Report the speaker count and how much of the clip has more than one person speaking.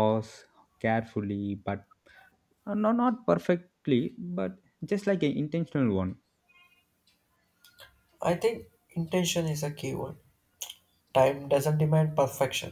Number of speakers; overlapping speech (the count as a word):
two, no overlap